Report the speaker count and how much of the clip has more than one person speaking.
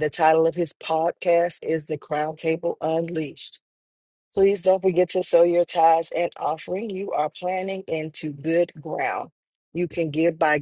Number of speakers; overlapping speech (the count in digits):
1, no overlap